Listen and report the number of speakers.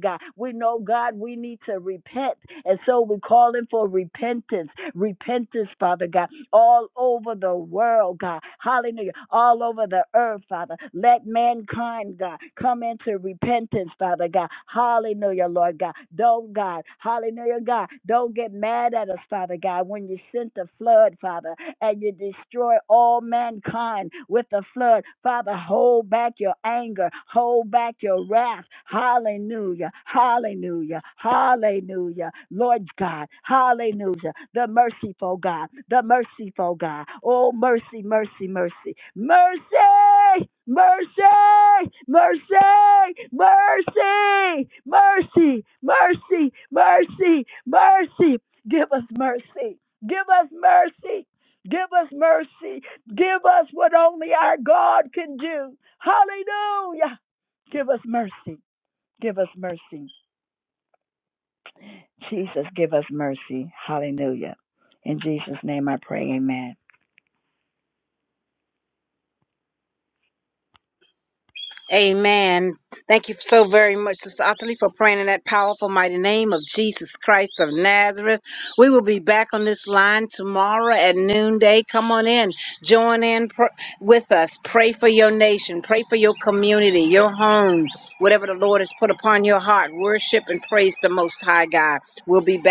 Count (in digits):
2